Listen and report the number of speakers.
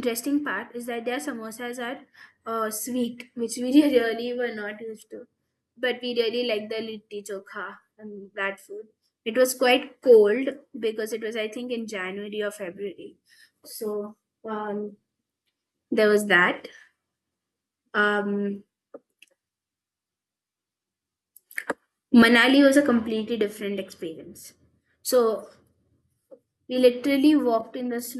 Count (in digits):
1